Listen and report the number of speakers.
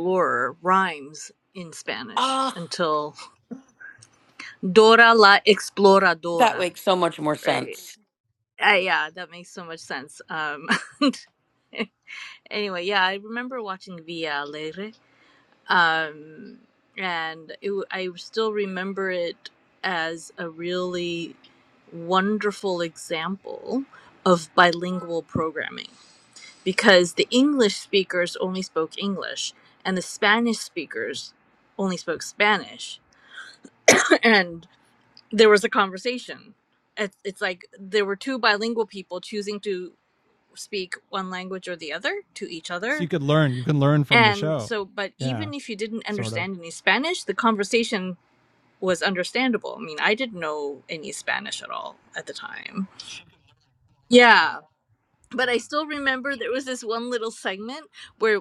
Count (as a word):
three